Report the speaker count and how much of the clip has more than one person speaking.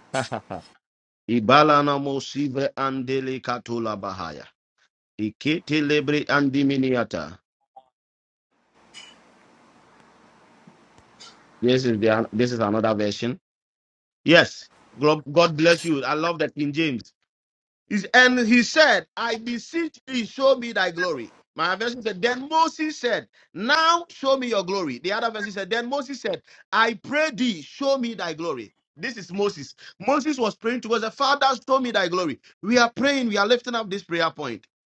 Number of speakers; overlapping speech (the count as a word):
one, no overlap